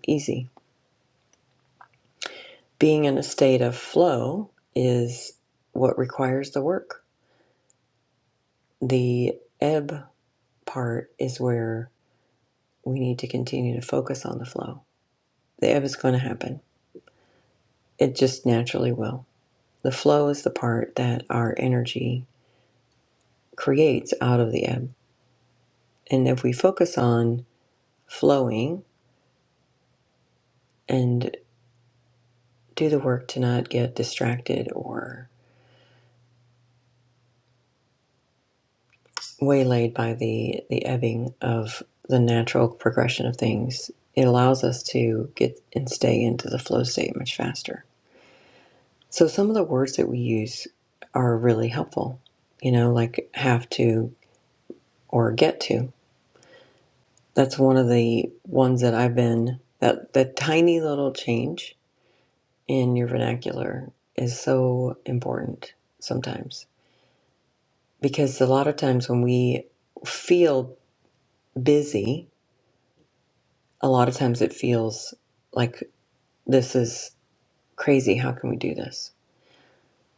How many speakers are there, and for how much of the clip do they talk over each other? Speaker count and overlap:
1, no overlap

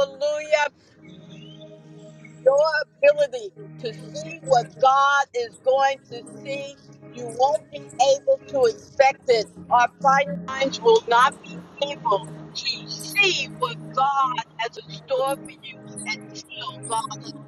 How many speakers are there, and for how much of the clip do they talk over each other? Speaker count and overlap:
1, no overlap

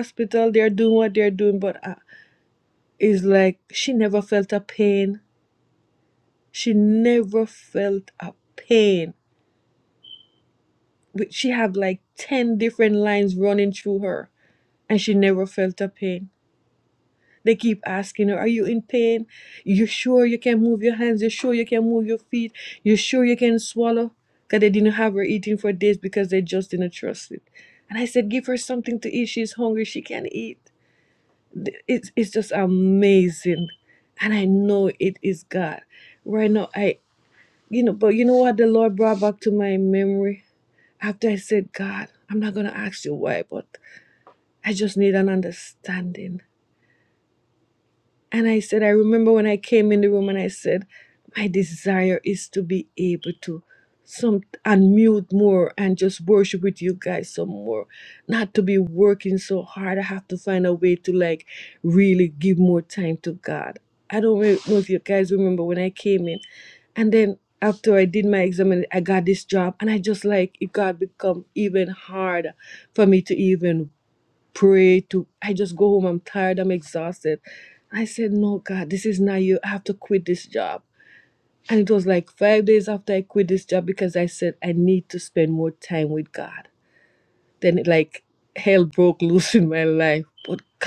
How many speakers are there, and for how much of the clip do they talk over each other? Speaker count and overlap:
1, no overlap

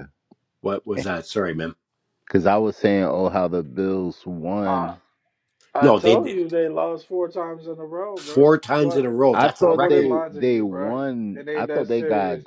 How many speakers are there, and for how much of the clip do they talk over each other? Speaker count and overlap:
3, about 36%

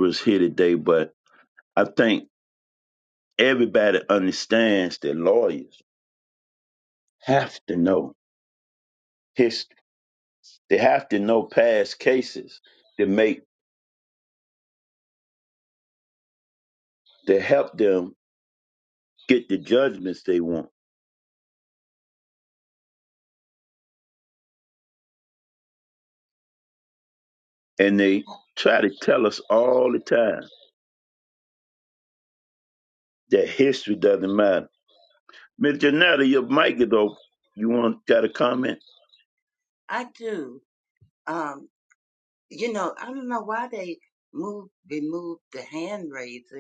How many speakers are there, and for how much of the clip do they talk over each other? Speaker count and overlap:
2, no overlap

